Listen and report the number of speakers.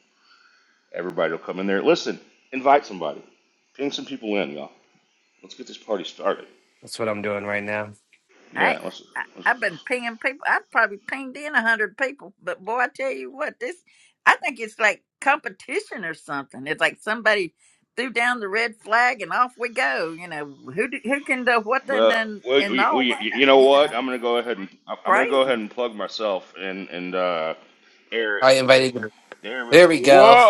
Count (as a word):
three